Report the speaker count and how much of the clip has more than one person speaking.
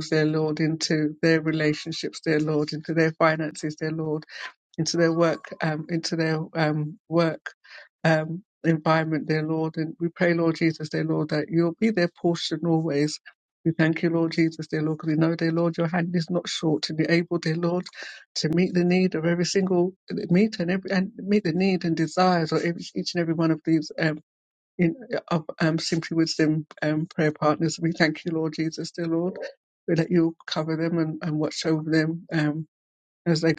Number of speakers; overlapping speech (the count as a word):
one, no overlap